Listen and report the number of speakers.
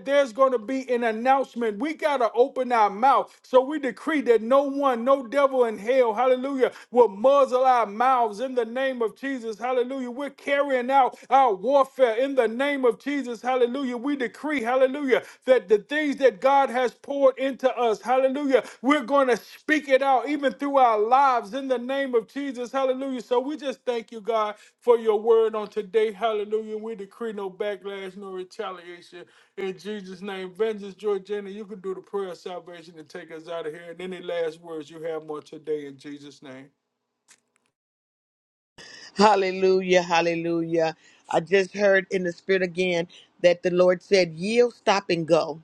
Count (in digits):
2